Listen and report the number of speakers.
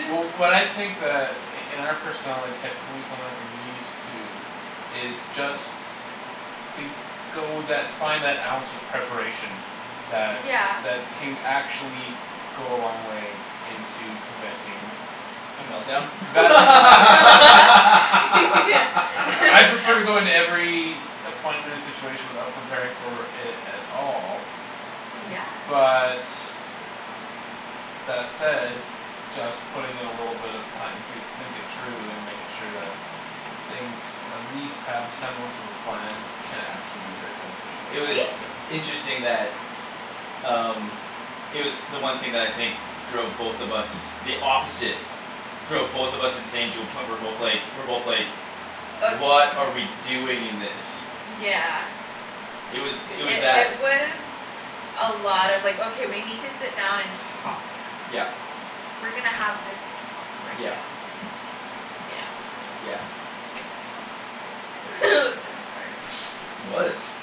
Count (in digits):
3